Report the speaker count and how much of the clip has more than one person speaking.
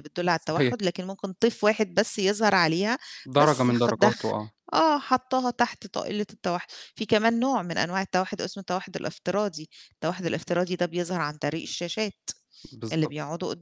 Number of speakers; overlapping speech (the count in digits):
2, about 10%